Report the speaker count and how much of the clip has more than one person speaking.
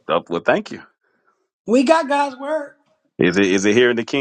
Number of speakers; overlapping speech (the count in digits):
2, no overlap